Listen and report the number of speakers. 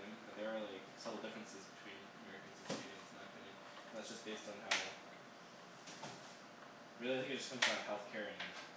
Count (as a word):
one